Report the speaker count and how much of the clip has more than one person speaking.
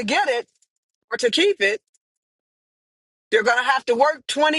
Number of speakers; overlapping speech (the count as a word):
one, no overlap